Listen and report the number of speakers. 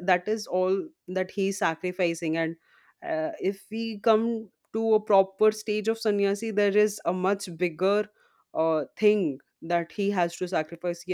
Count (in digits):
1